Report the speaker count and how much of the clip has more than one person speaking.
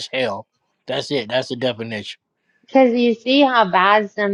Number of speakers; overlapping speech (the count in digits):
2, no overlap